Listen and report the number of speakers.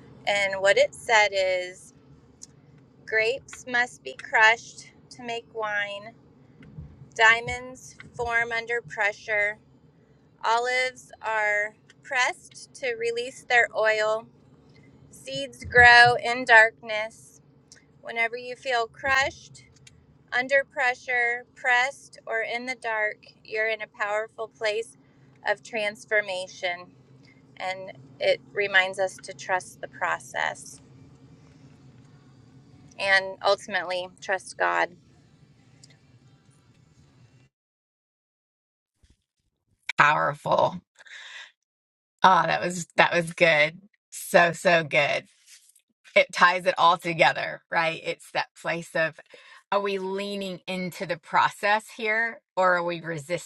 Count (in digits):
2